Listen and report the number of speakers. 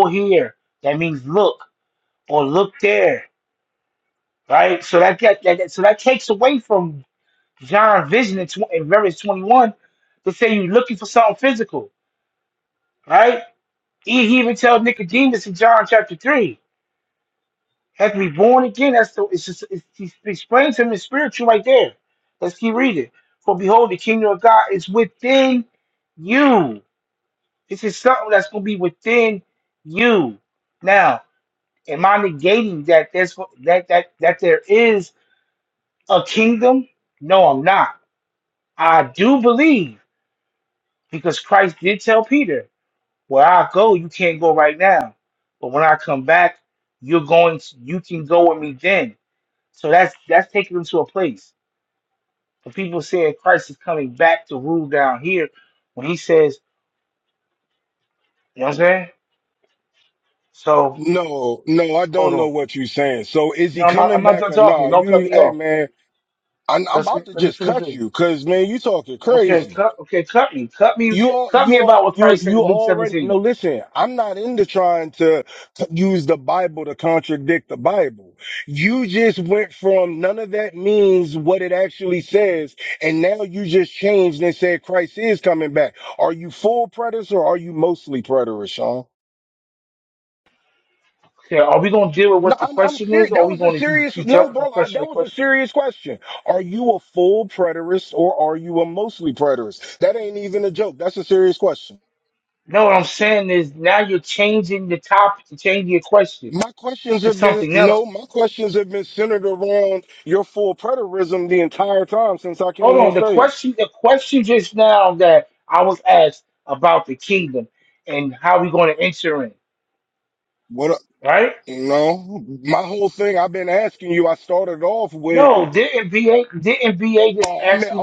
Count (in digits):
2